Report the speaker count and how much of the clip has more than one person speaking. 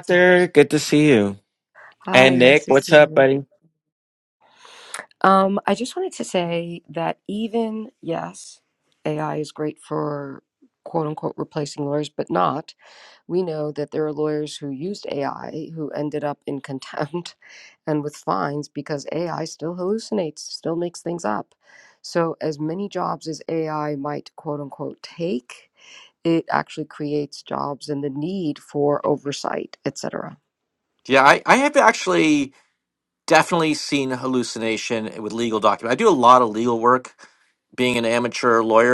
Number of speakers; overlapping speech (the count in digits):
3, about 3%